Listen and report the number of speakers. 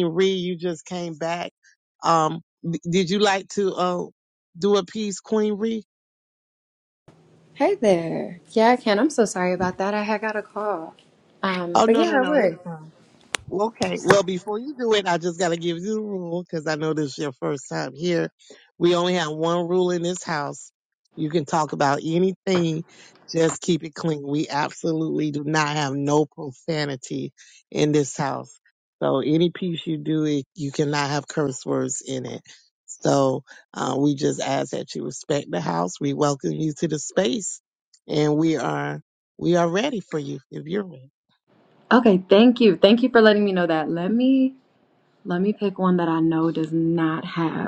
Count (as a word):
two